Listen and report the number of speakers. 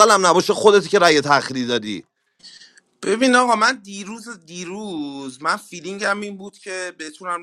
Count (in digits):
2